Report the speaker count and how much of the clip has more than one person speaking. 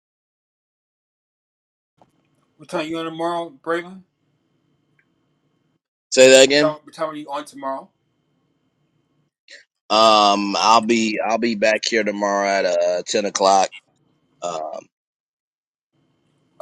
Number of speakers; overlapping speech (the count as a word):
two, about 1%